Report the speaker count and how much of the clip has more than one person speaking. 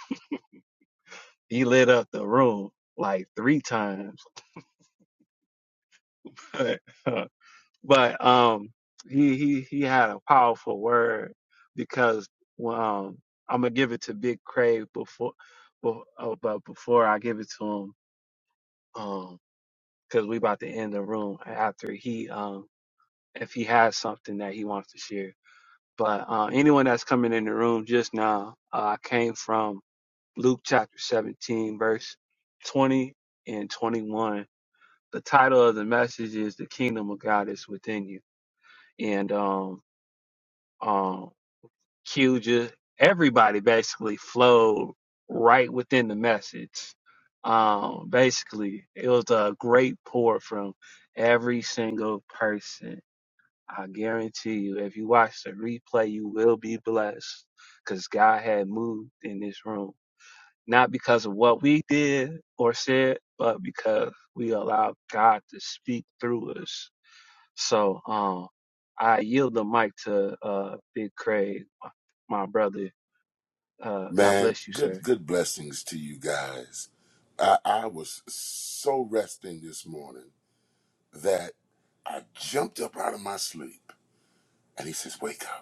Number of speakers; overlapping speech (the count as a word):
two, about 1%